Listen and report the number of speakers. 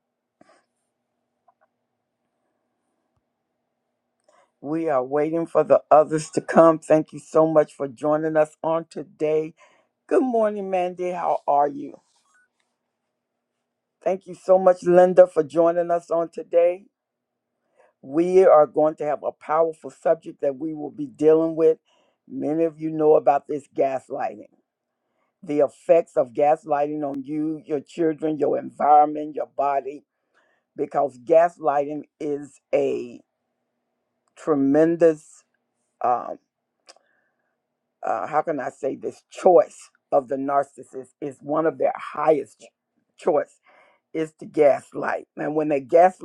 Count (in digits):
1